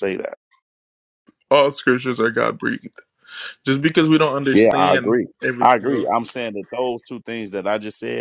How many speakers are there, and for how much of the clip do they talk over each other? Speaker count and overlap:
2, about 14%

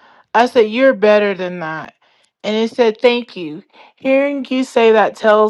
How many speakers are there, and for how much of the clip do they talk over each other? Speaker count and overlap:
1, no overlap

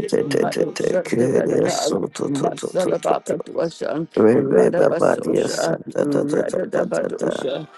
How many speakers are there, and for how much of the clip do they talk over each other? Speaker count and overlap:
2, about 61%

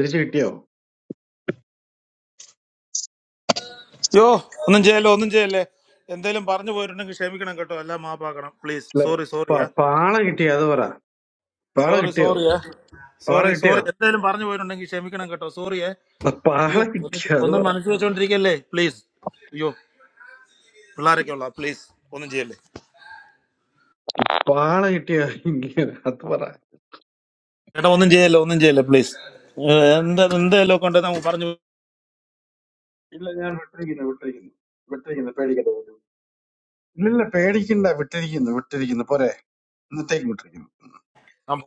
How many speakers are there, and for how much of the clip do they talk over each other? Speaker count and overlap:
2, about 6%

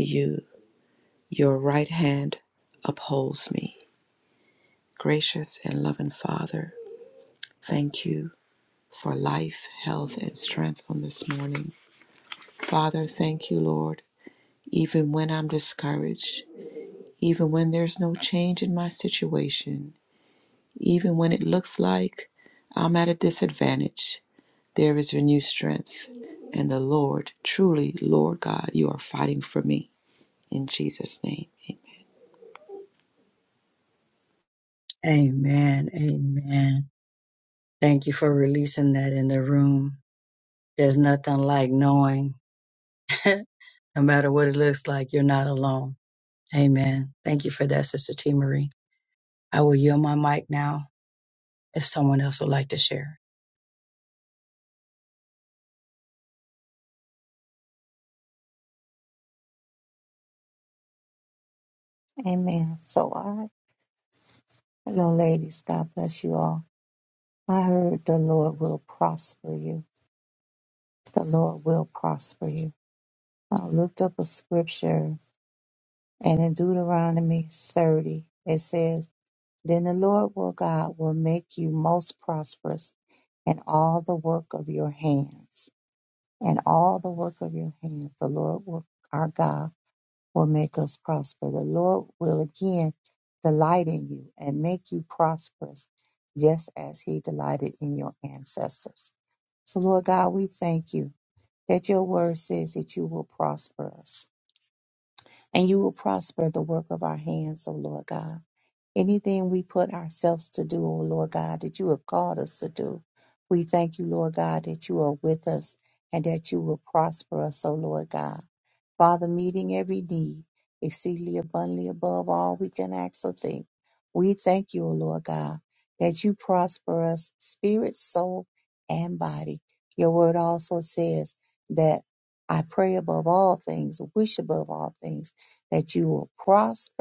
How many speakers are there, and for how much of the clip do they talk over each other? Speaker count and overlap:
3, no overlap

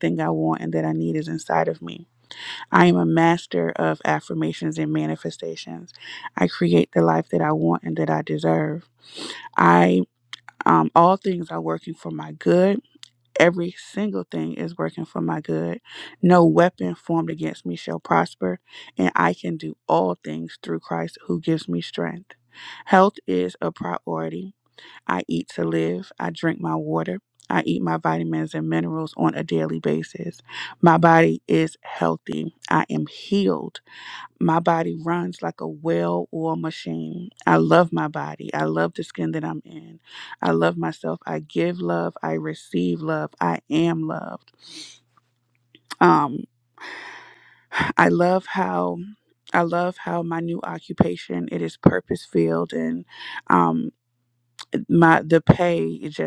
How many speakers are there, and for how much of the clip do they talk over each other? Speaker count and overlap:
1, no overlap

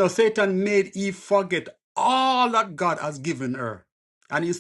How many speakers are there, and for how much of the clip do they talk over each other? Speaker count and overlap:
1, no overlap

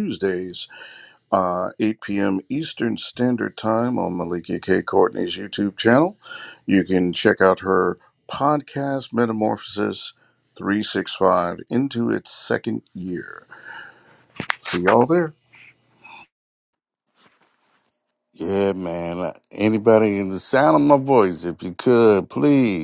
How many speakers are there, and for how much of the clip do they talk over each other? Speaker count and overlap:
2, no overlap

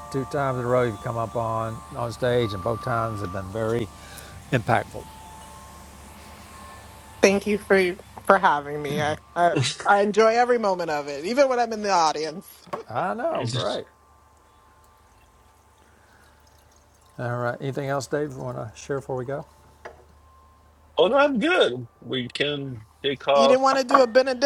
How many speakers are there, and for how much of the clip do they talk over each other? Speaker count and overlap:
3, about 2%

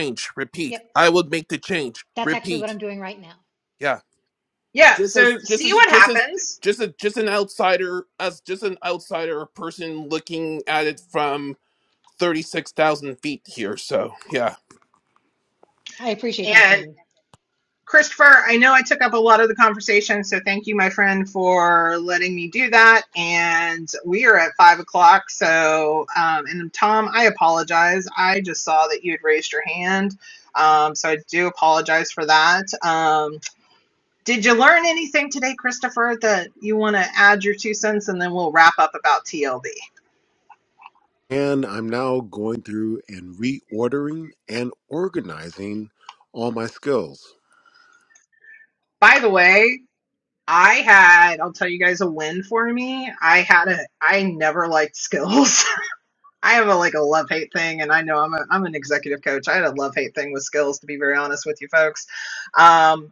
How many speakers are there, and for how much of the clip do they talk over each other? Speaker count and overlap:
4, about 4%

